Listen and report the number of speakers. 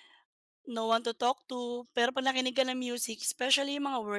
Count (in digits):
1